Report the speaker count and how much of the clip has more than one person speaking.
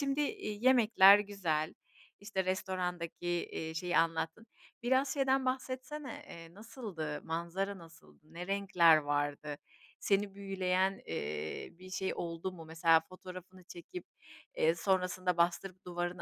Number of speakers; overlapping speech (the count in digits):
1, no overlap